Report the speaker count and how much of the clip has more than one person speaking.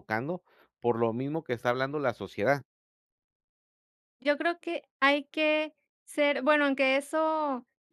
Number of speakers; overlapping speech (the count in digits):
2, no overlap